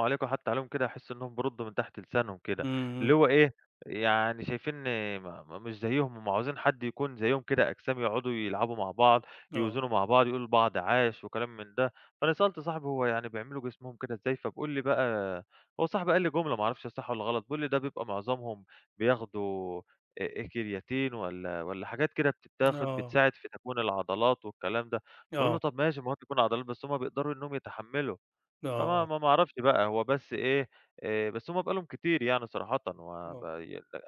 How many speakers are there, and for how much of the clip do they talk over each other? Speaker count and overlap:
two, about 4%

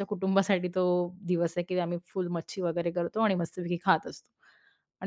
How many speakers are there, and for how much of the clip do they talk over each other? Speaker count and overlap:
one, no overlap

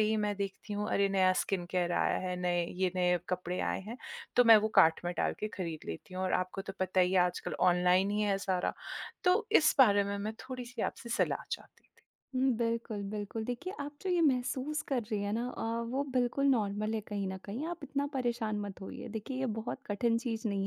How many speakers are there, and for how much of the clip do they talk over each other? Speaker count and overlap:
two, no overlap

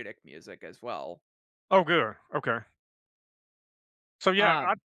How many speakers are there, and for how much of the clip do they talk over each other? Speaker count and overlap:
two, about 6%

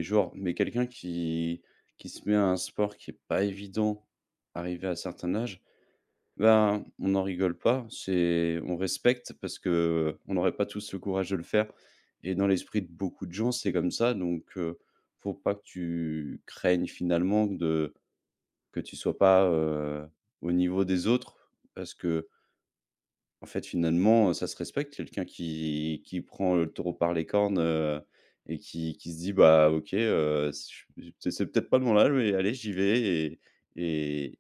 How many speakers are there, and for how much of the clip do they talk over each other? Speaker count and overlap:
one, no overlap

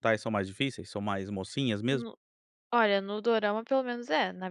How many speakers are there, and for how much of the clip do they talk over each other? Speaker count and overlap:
two, about 3%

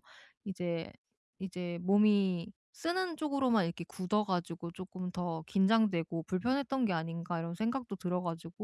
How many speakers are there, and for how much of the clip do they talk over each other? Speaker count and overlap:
one, no overlap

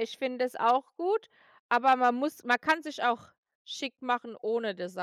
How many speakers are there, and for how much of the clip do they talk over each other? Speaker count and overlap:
one, no overlap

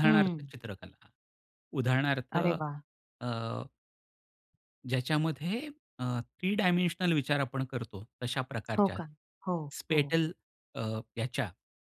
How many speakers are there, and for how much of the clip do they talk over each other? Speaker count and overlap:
two, about 9%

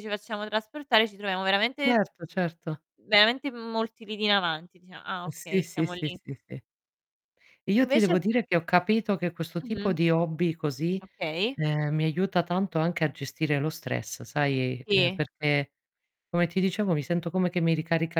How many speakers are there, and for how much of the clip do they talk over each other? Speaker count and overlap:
two, about 11%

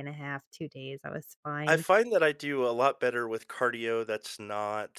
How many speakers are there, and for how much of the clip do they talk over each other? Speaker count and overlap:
two, about 4%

